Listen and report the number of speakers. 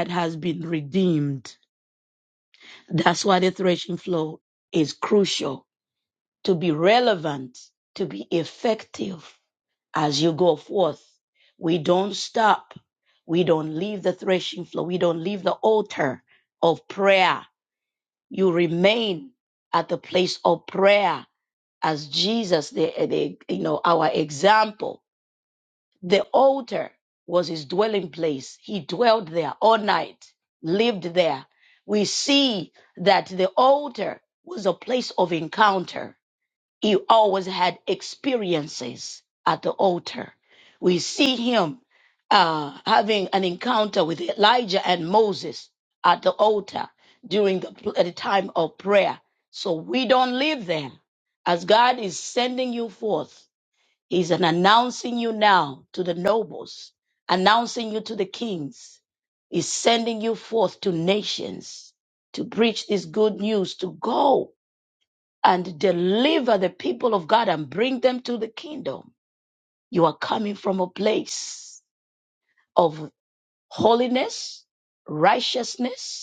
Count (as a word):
one